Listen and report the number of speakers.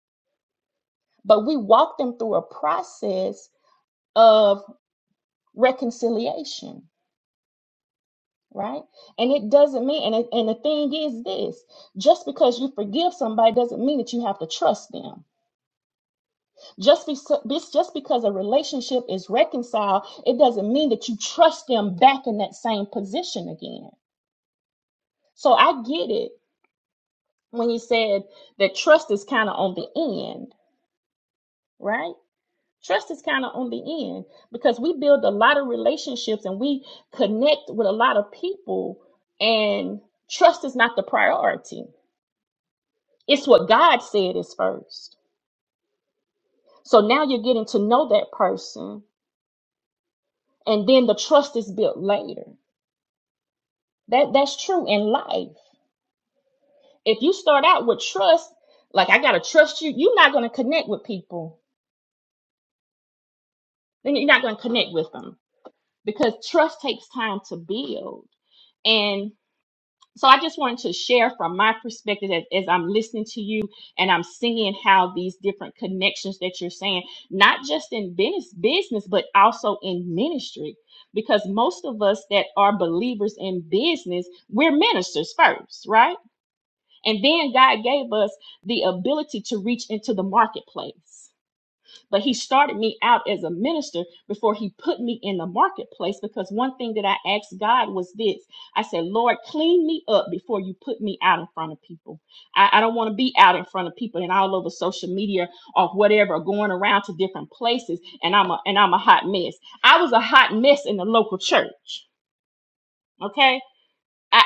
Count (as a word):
one